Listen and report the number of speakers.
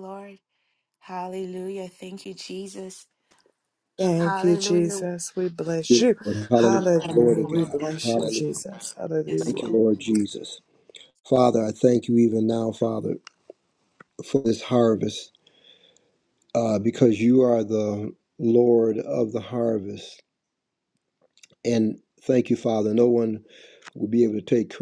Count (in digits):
3